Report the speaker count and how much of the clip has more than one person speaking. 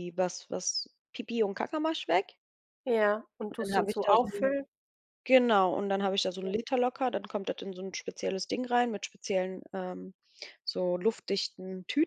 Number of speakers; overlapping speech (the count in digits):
2, about 8%